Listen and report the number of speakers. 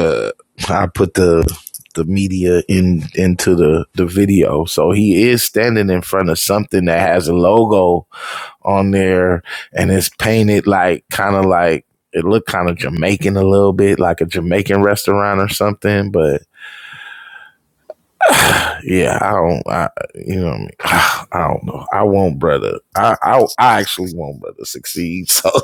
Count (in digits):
1